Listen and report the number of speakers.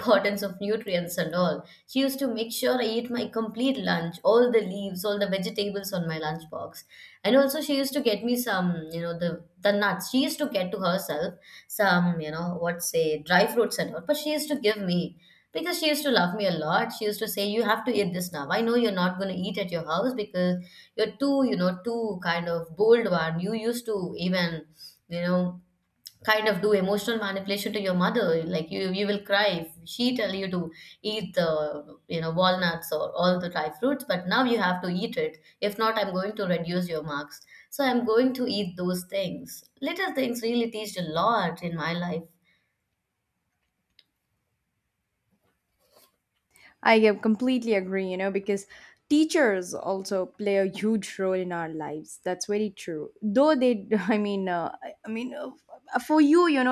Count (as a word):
two